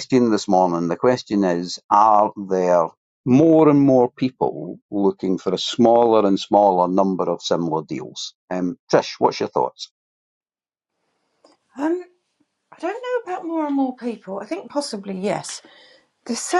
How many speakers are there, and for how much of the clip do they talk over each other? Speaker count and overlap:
two, no overlap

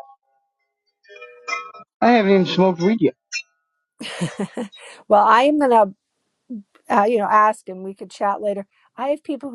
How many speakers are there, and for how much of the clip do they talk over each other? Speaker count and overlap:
two, no overlap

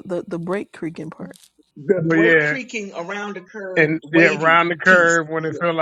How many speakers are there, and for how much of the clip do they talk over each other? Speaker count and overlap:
three, about 34%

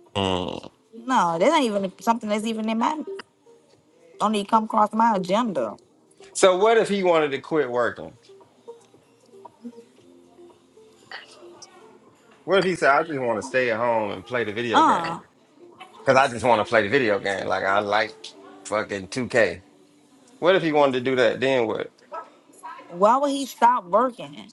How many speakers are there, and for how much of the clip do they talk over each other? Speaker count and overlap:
two, about 2%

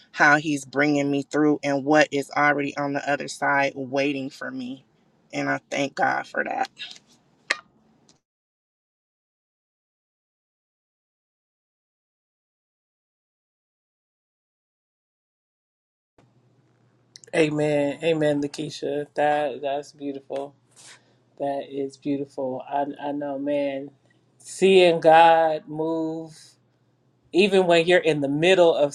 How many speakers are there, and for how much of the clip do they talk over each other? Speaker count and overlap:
two, no overlap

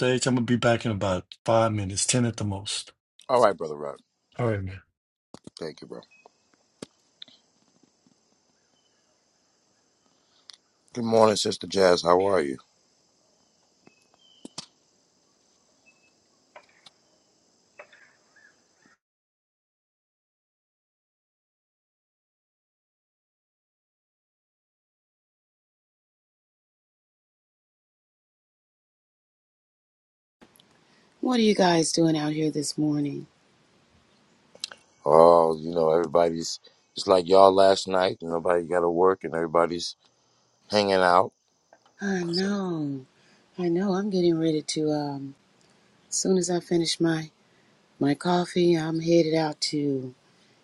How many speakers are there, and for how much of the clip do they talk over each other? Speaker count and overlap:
three, no overlap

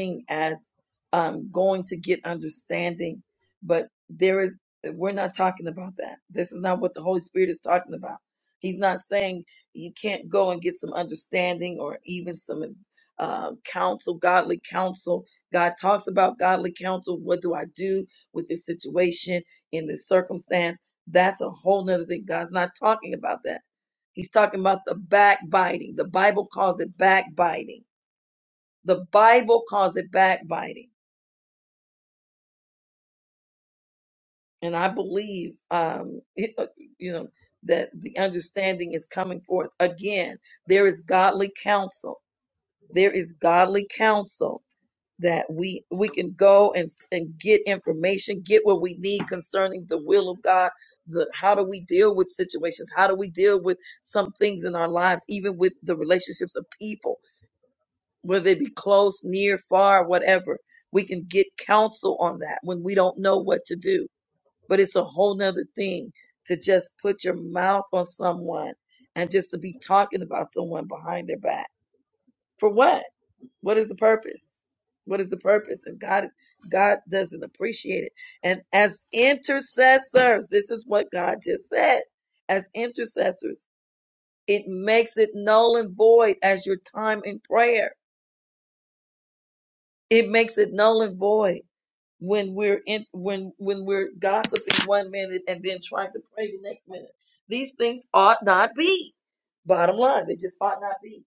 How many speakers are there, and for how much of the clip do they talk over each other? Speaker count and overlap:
one, no overlap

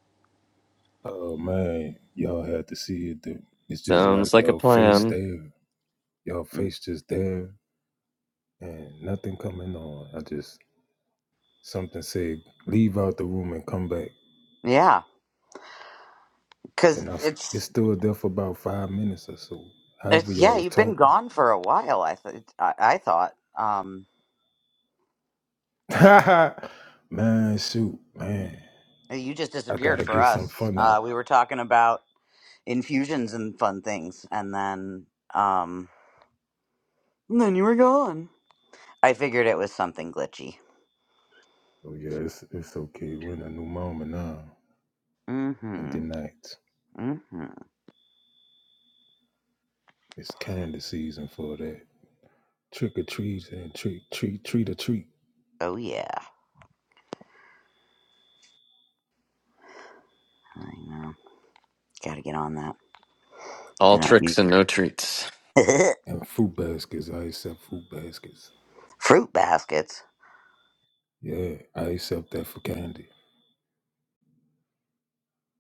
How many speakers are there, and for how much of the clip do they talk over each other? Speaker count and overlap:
three, about 6%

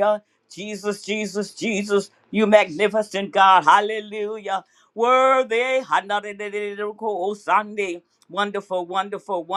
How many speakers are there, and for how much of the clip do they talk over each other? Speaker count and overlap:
one, no overlap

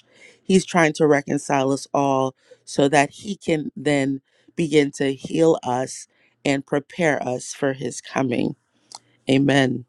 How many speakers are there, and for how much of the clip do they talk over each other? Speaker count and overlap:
one, no overlap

